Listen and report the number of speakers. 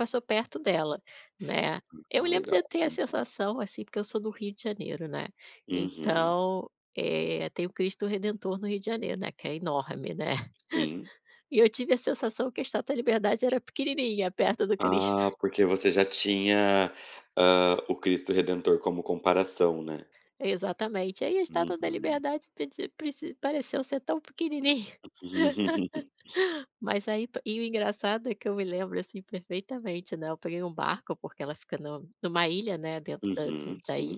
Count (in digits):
2